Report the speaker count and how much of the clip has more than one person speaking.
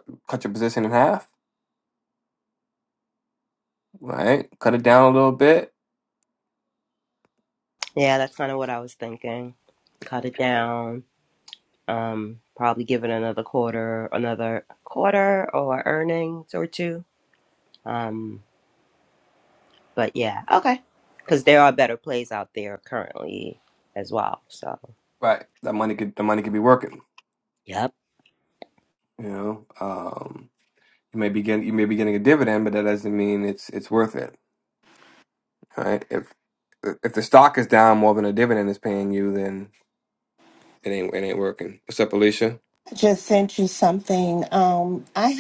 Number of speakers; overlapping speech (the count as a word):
three, no overlap